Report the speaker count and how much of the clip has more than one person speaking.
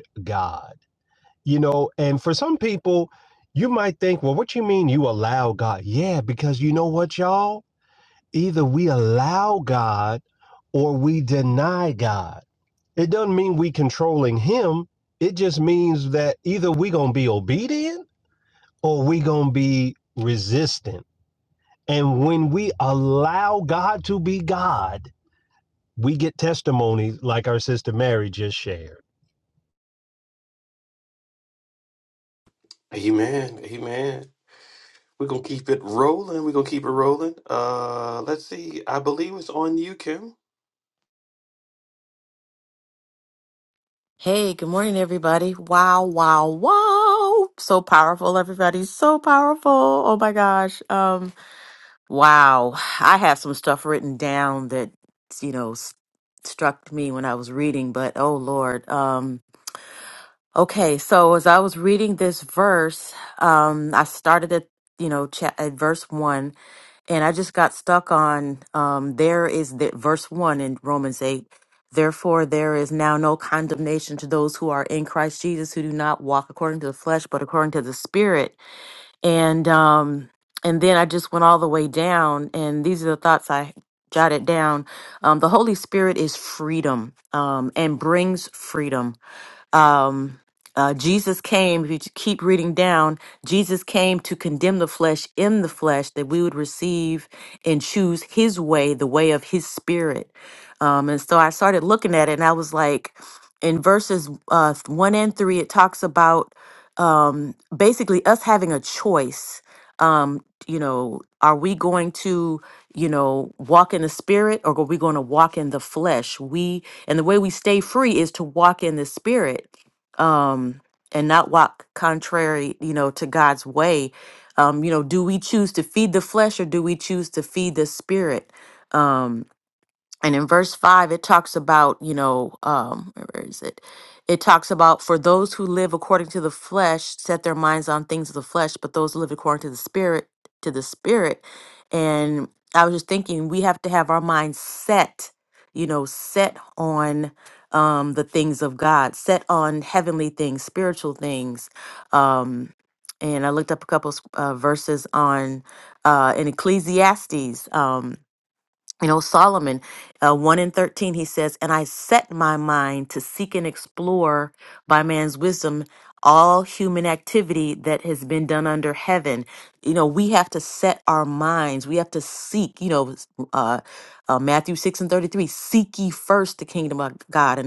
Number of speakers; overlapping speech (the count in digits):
3, no overlap